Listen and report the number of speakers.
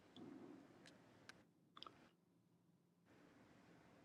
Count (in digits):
0